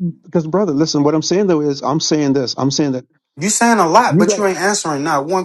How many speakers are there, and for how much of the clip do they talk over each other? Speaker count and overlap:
two, about 6%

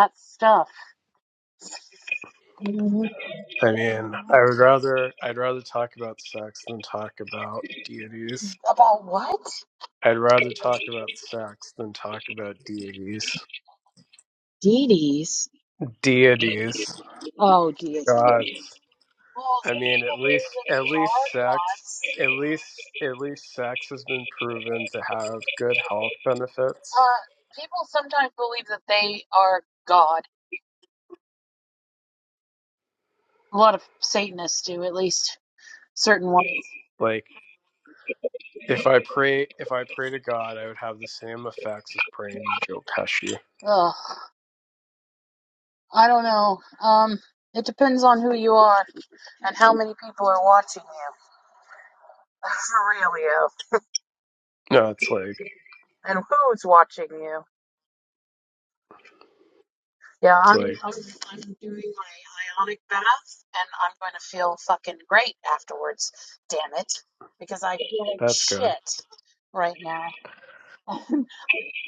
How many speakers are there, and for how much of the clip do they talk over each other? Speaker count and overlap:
two, about 5%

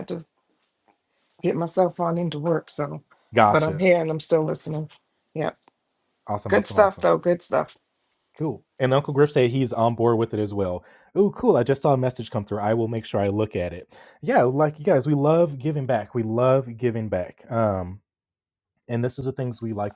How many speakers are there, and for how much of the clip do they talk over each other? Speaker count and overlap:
two, about 4%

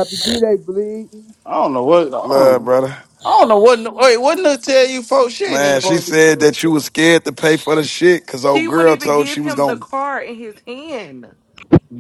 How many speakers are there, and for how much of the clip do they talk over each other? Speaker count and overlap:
four, about 21%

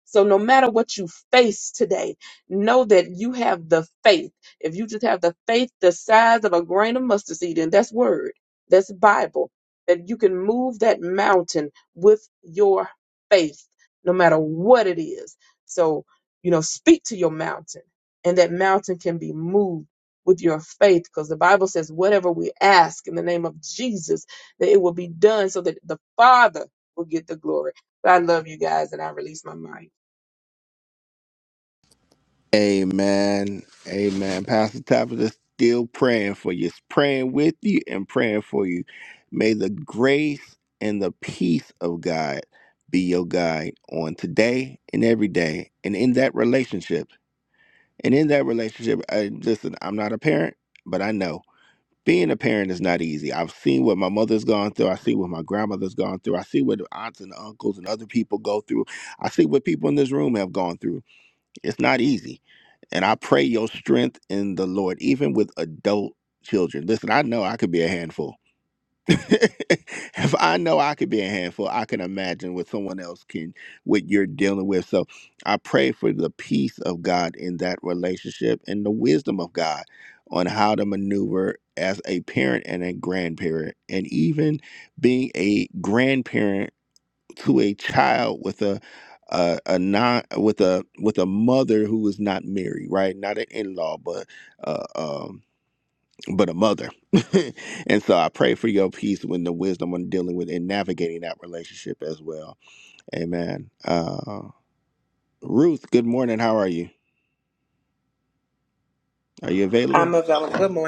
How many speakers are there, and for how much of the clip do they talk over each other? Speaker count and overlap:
three, under 1%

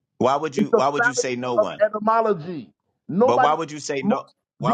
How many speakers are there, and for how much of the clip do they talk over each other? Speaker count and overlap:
two, about 38%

